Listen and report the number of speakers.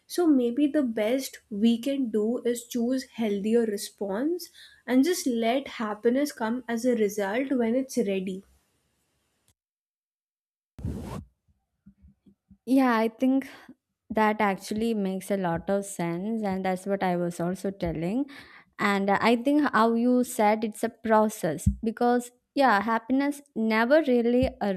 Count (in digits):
2